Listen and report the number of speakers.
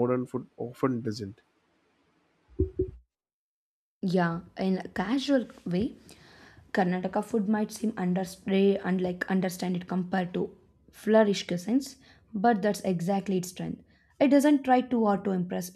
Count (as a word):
two